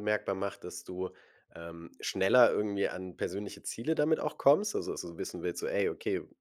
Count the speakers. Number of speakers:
1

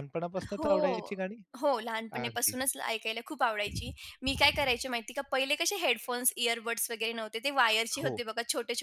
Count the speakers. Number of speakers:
2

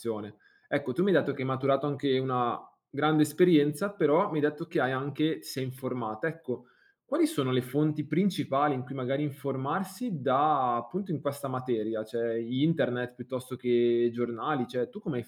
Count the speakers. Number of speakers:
1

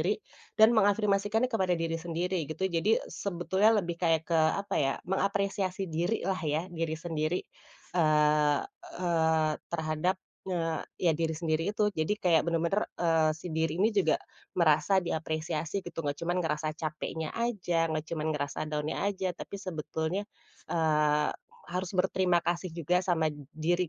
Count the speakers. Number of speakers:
1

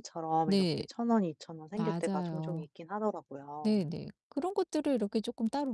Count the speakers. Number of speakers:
2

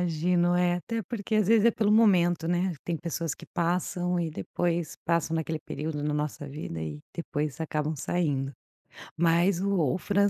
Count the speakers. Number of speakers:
1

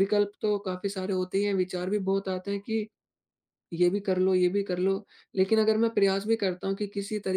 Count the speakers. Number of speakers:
1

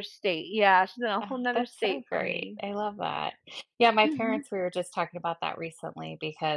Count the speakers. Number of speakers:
2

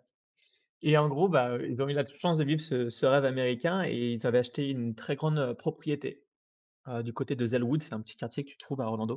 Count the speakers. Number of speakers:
1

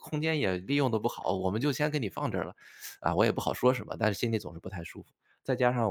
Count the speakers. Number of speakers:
1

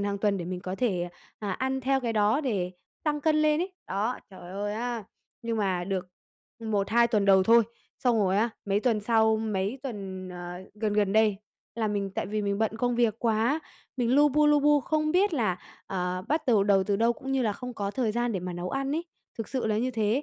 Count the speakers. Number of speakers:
1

